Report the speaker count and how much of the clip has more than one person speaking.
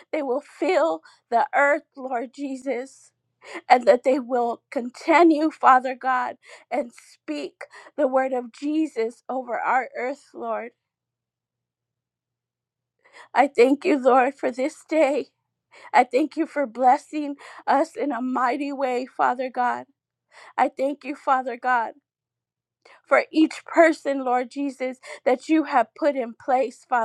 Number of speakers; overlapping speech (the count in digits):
1, no overlap